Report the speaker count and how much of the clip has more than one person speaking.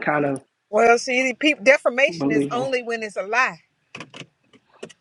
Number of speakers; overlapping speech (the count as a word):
two, about 13%